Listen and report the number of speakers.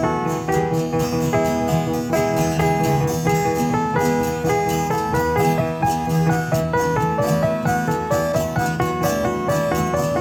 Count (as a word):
zero